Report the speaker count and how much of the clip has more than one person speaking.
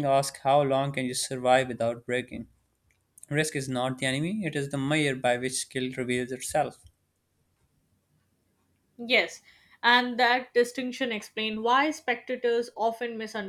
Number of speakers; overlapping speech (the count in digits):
2, no overlap